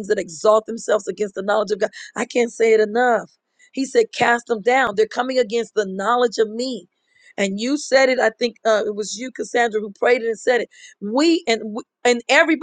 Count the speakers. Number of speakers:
one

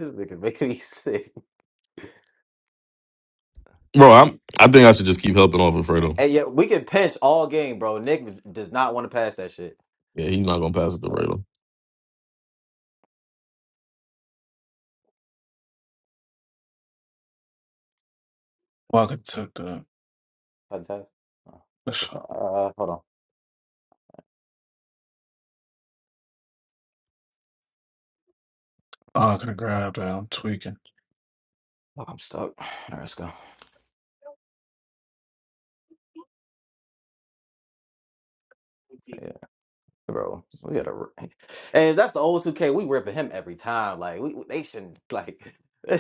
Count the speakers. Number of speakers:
three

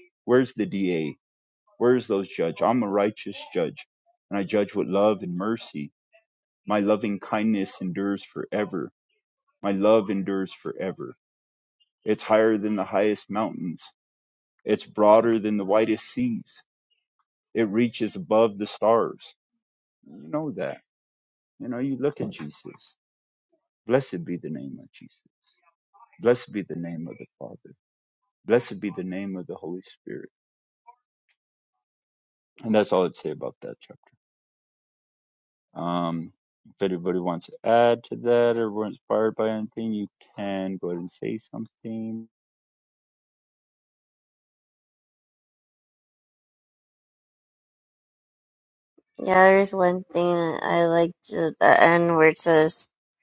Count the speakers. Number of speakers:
two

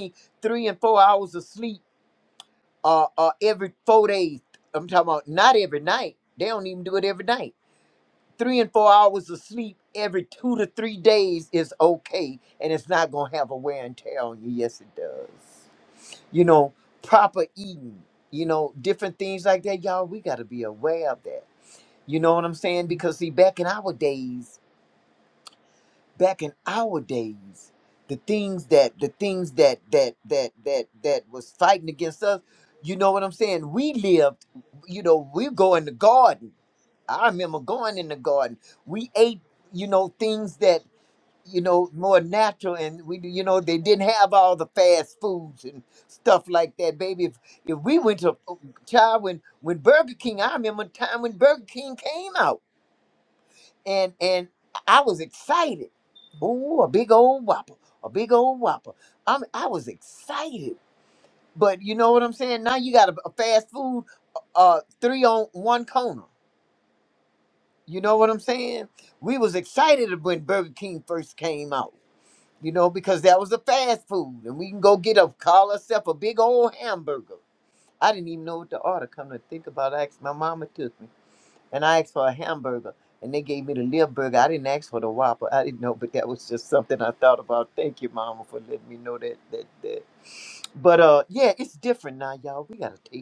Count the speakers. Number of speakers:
one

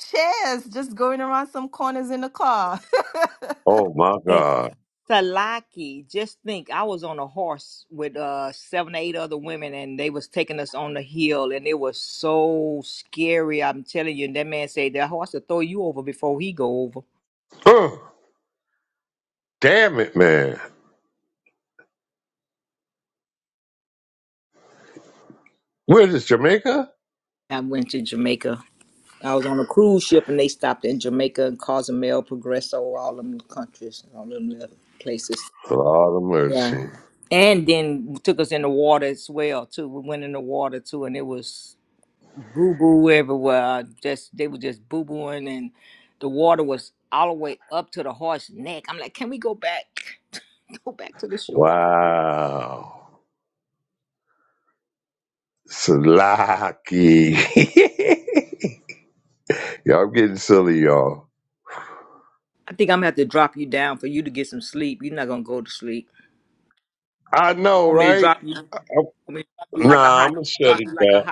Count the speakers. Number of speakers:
three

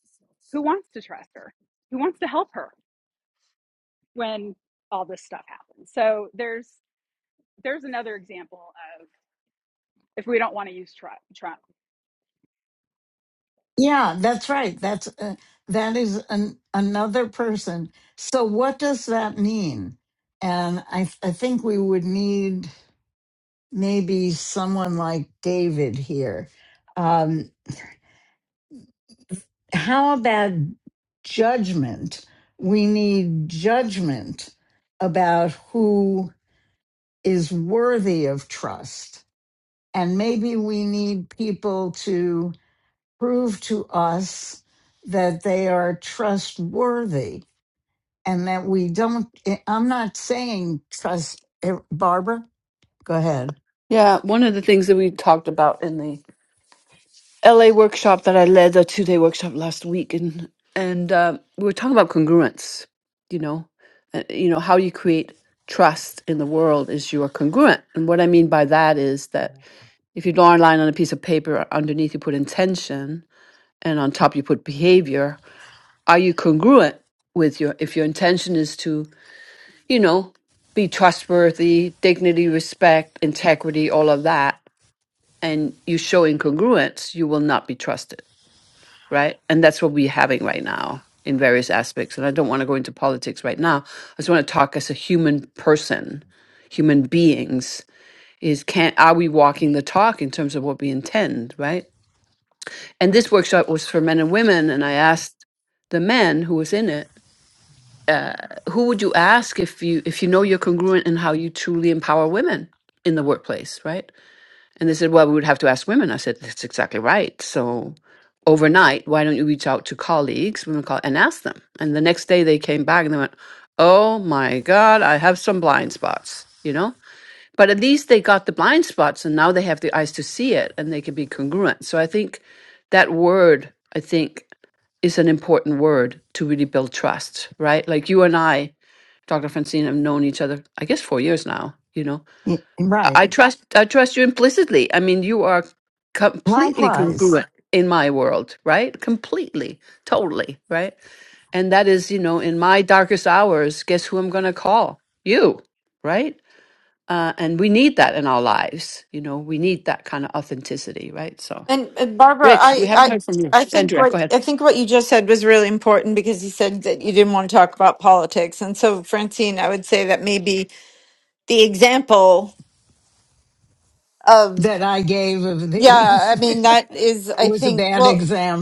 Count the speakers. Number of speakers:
four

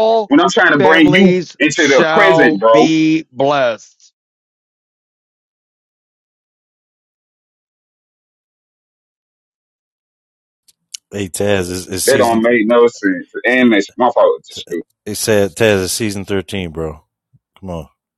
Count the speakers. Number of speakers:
three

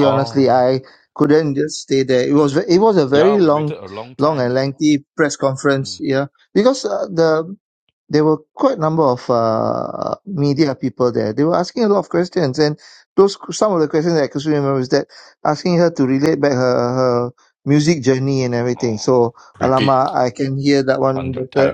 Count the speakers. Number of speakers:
two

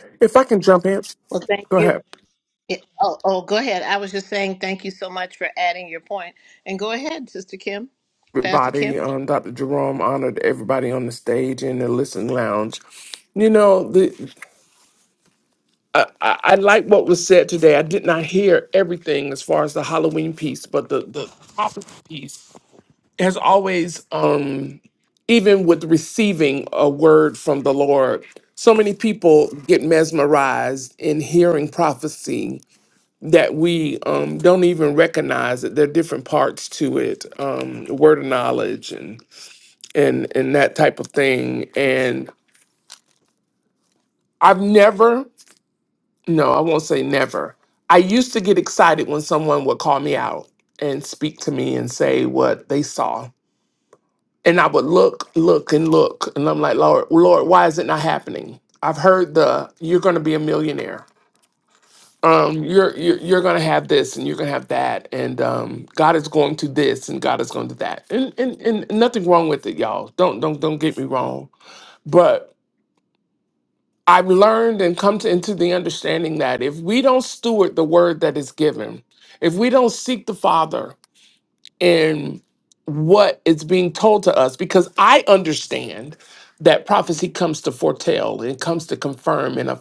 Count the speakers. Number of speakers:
two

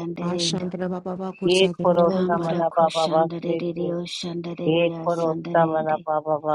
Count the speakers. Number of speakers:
three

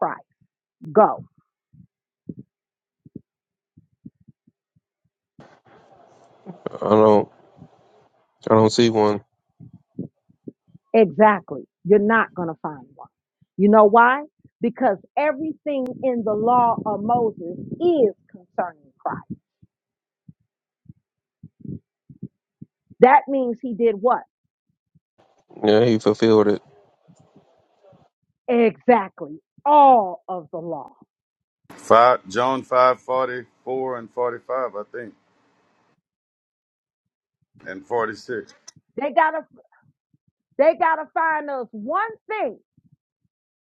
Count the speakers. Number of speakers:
three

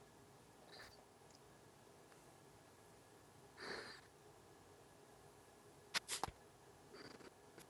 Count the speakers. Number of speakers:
zero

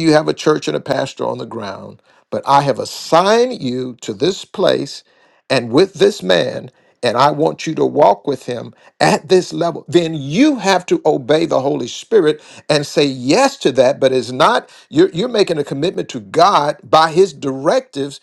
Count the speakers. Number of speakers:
one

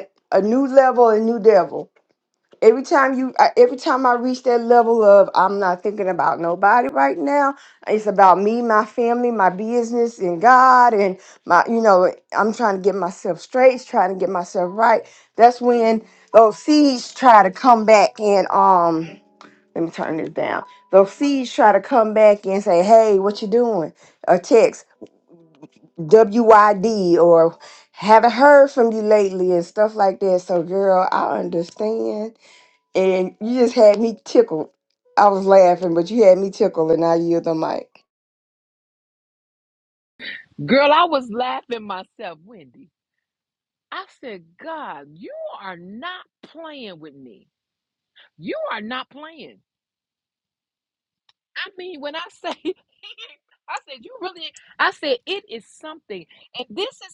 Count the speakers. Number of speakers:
two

